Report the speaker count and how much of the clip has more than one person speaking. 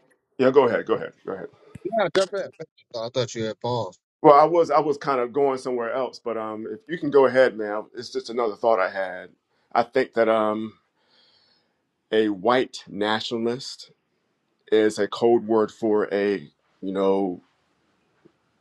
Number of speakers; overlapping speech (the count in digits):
2, no overlap